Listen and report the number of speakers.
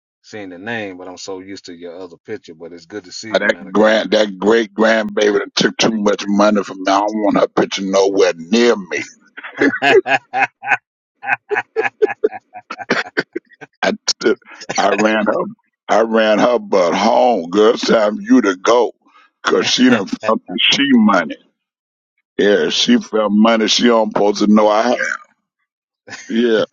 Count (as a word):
two